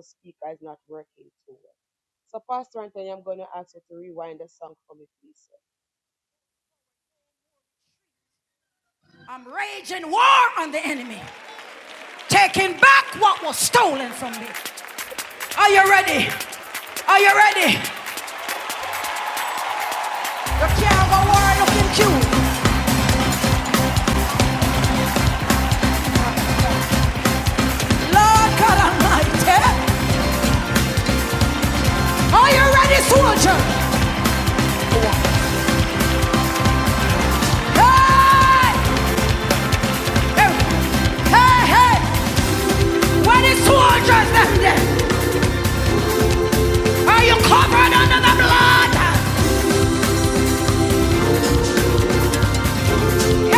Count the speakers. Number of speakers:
two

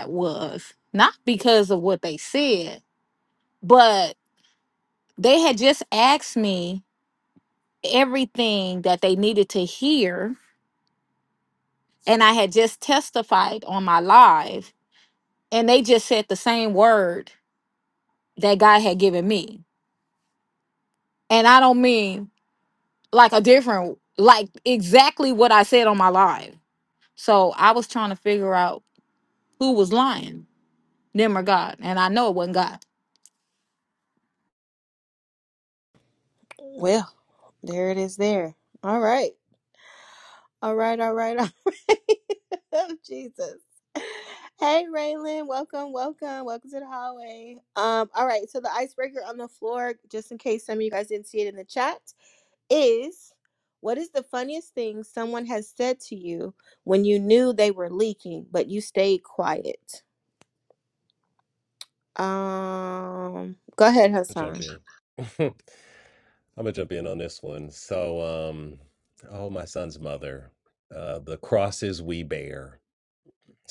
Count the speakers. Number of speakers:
three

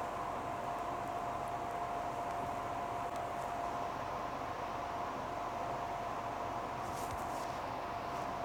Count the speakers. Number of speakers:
zero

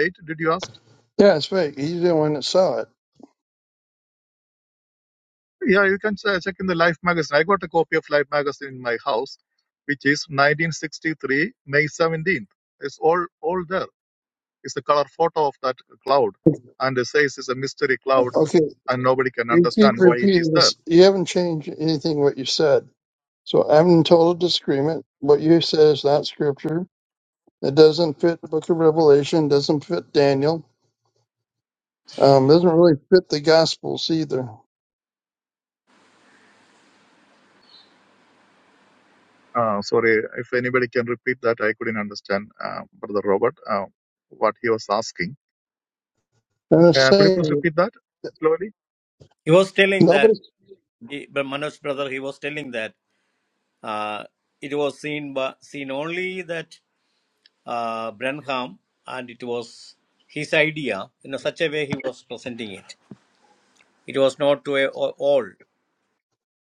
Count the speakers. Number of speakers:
three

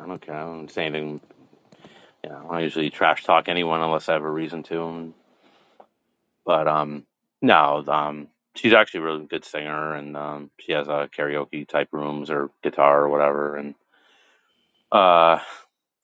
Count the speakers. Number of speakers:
one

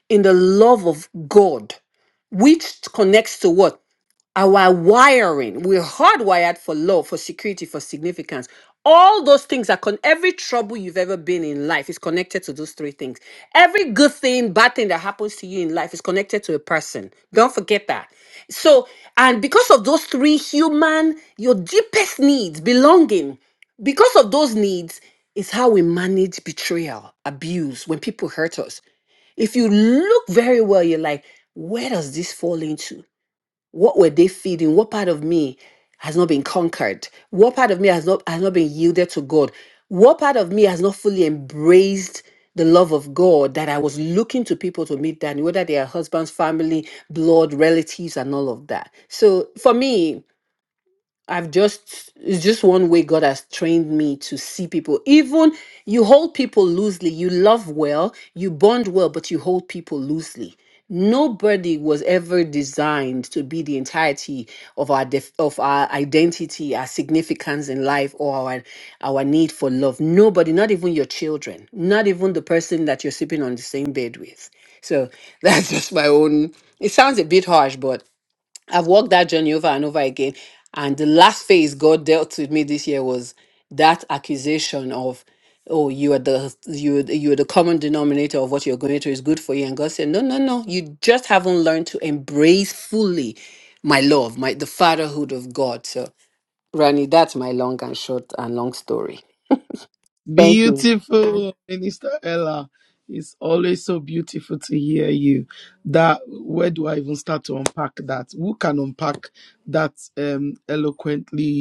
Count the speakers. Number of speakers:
two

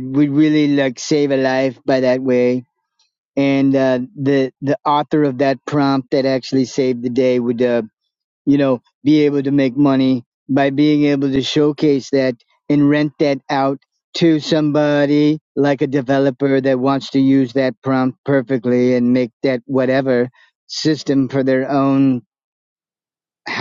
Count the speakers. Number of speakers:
one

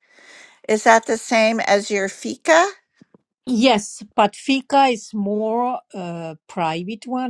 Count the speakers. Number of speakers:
two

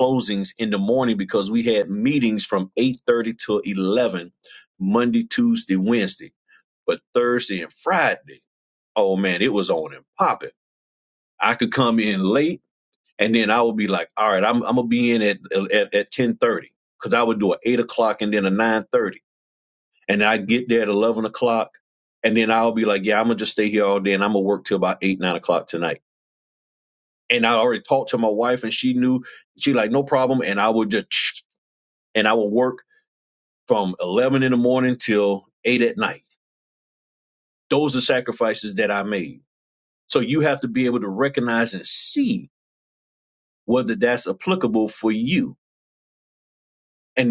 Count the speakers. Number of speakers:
one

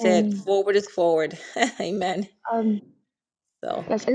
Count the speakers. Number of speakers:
two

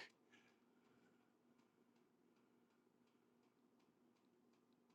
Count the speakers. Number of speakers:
zero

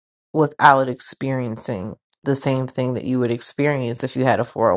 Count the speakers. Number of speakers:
one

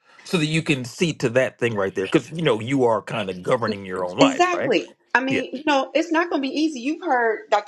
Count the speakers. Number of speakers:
two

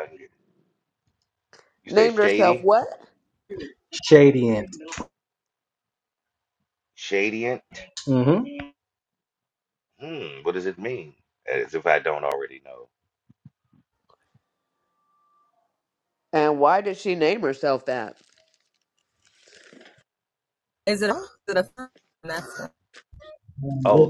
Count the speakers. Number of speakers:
four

